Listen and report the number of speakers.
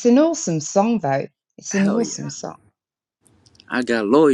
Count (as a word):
two